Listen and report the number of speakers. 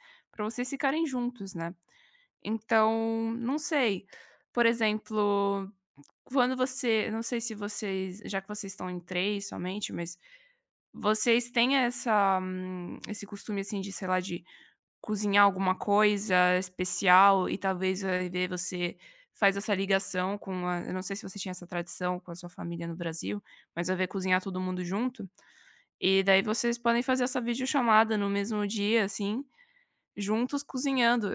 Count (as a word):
one